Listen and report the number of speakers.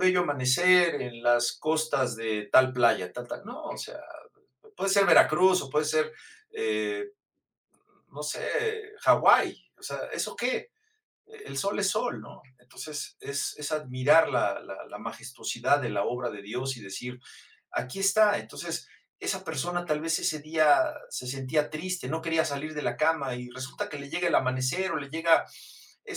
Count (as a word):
one